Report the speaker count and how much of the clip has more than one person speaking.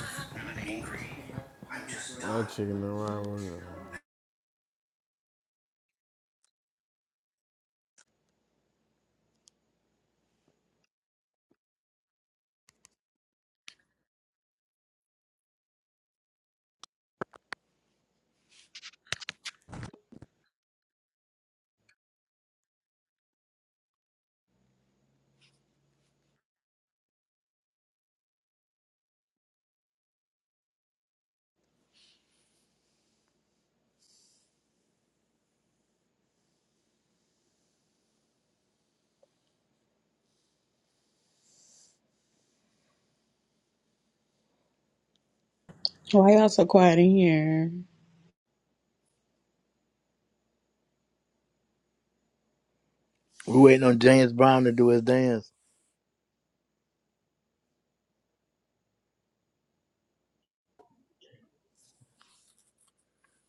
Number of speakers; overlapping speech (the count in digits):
3, no overlap